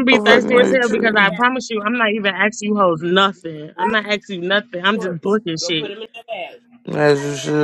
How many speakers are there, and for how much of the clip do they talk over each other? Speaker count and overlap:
3, about 24%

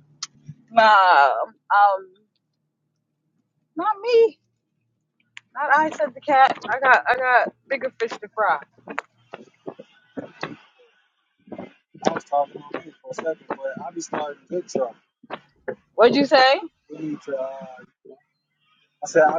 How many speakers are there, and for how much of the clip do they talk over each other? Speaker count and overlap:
2, no overlap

